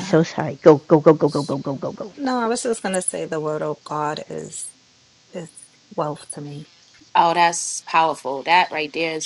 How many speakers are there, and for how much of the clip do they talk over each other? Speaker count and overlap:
three, about 2%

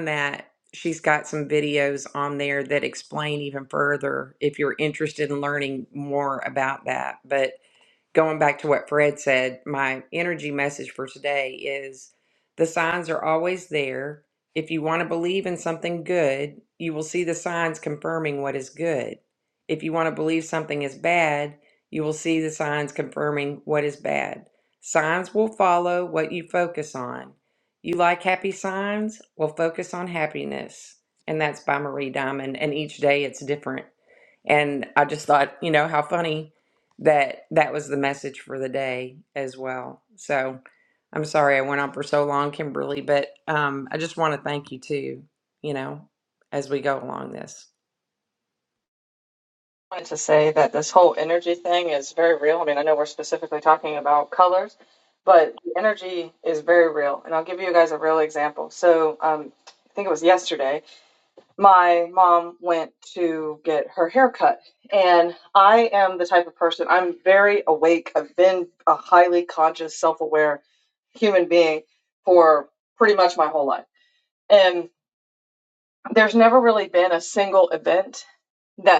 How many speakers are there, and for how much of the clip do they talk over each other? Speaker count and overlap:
two, no overlap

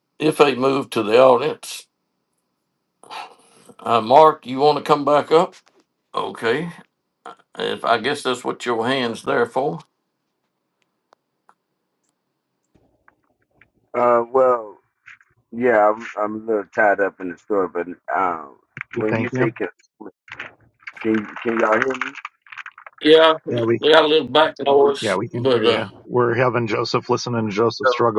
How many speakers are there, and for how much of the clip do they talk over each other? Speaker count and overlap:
three, about 6%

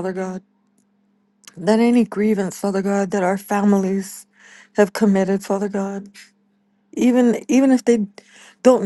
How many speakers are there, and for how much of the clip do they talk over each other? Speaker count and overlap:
one, no overlap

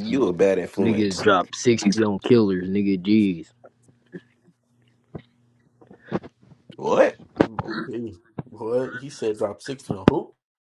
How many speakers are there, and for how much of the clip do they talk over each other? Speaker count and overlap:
three, about 6%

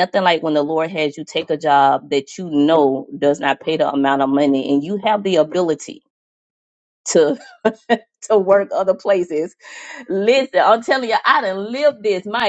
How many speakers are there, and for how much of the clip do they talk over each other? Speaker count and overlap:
one, no overlap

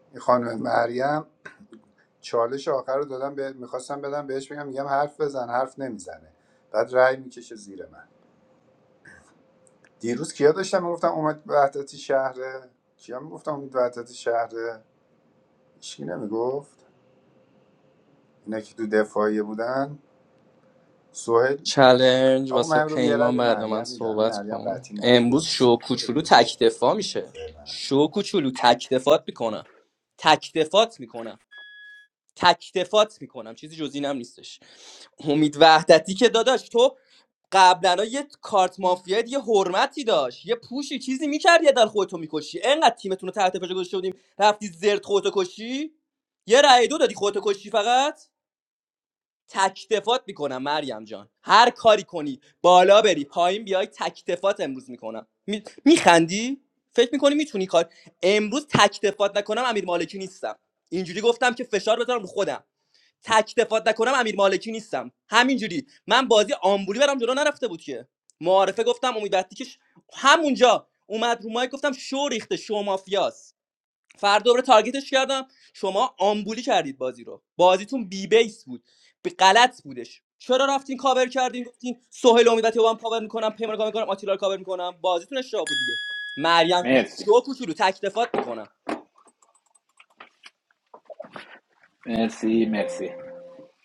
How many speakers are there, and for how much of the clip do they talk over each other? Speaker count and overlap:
three, about 4%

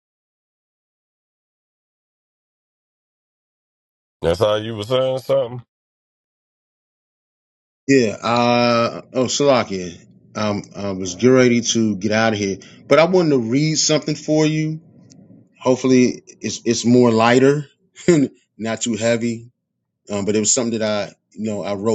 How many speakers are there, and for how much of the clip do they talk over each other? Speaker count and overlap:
two, no overlap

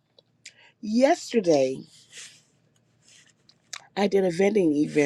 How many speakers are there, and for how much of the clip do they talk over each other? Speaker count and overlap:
one, no overlap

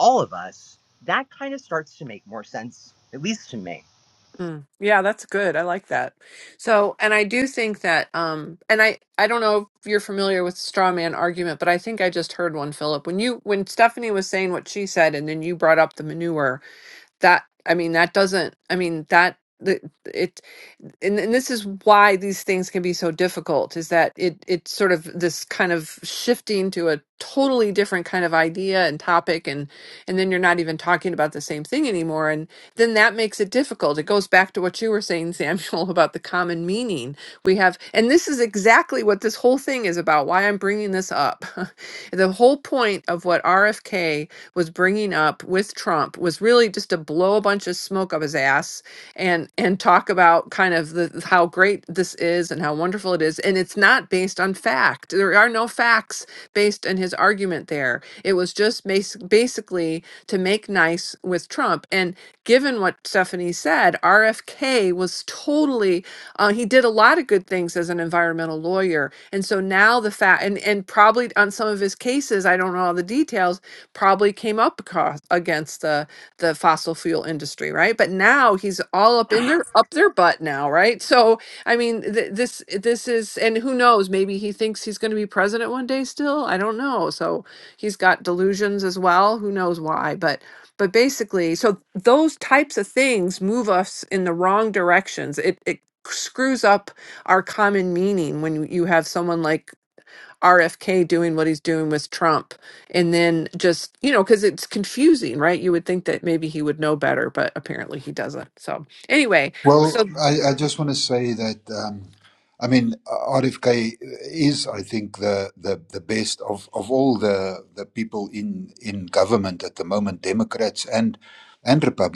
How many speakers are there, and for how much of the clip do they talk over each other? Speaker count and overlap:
three, under 1%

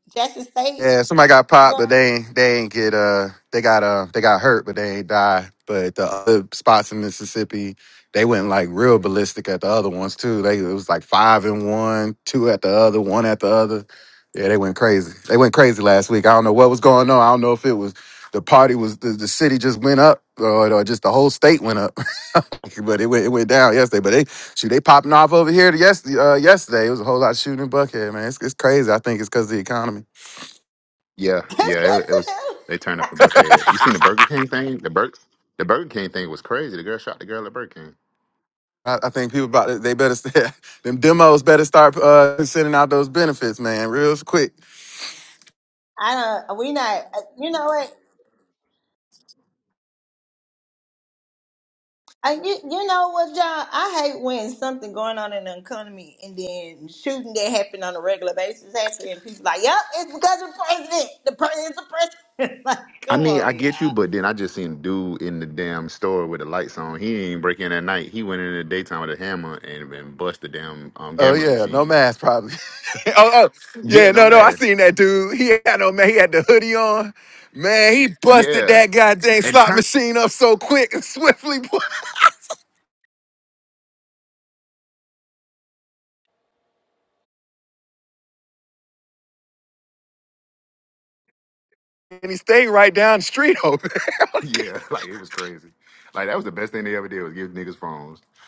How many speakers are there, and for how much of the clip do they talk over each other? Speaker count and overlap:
three, about 4%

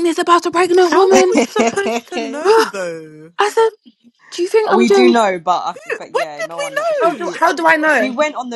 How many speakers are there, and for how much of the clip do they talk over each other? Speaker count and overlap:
three, about 33%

